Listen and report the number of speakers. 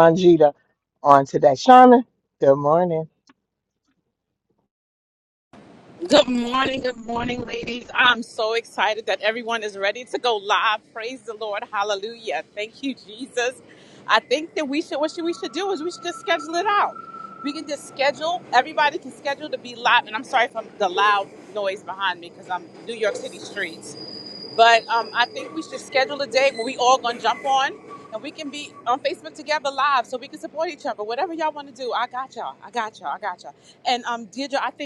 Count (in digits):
2